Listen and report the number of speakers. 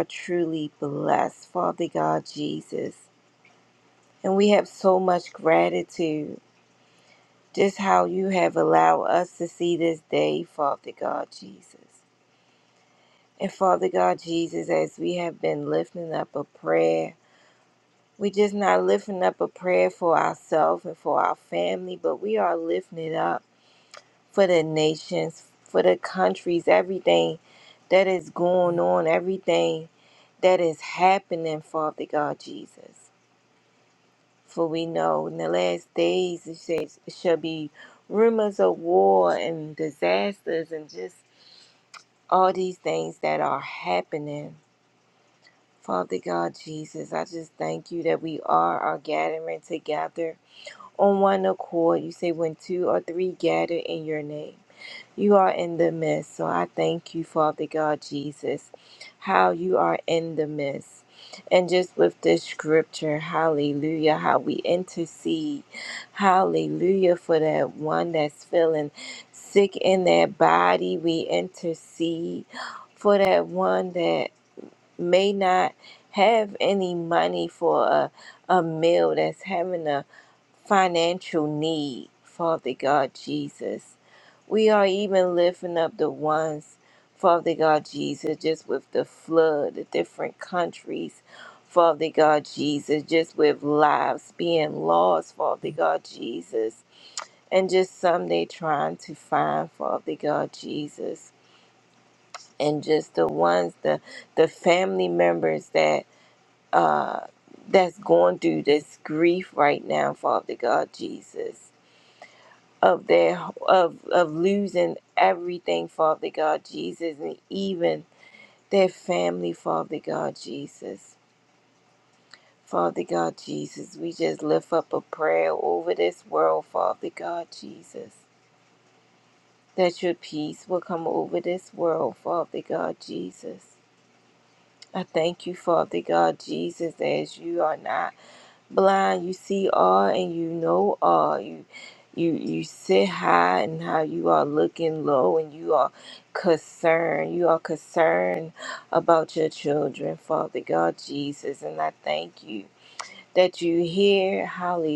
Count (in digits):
1